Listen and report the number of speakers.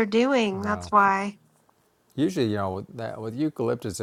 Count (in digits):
2